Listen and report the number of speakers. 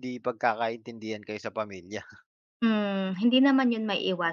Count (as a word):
two